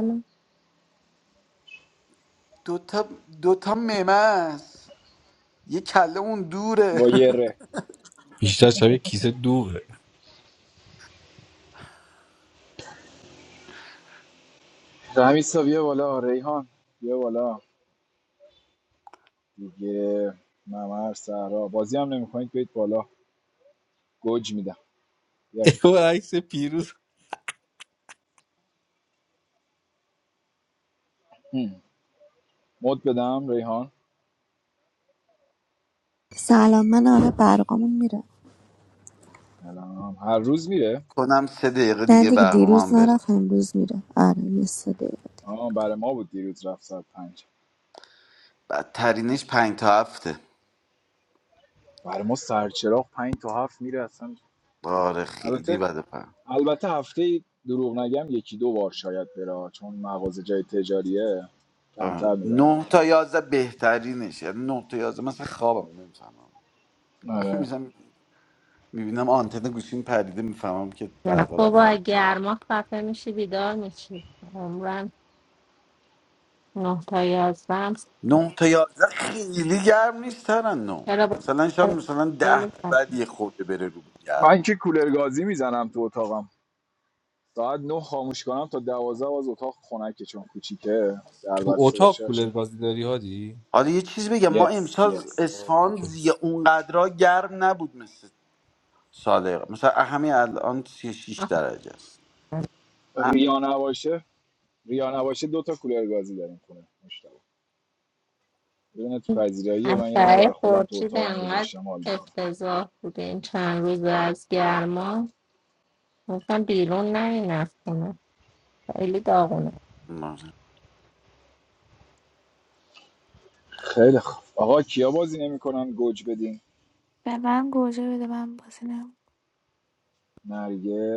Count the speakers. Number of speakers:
6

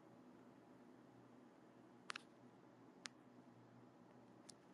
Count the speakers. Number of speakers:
0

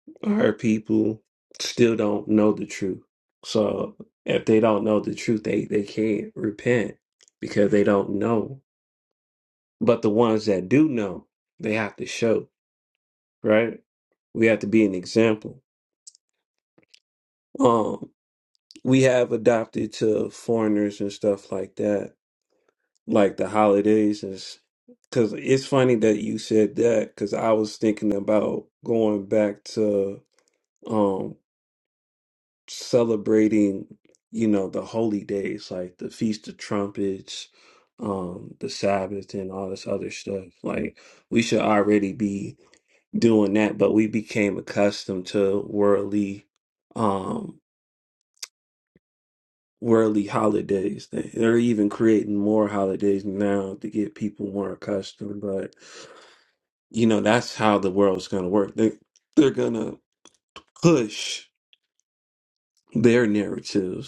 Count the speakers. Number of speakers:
1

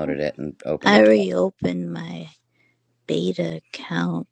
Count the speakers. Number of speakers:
2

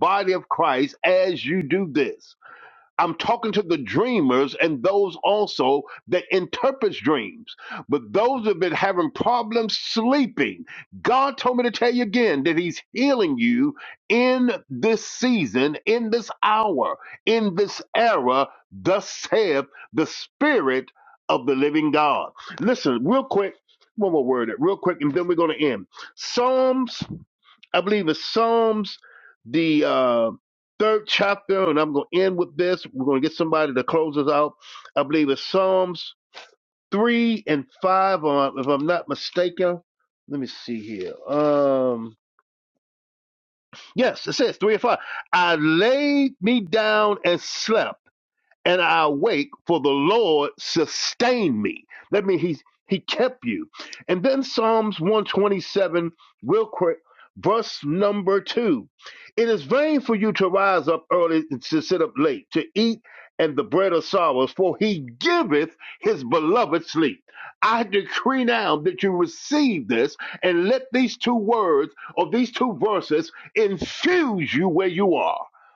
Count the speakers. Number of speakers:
1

